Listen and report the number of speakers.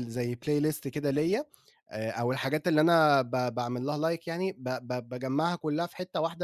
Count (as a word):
one